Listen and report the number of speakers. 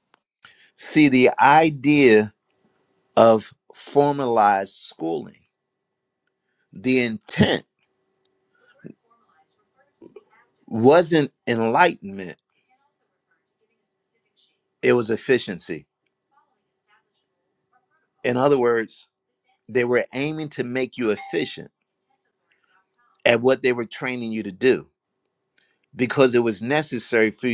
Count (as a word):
one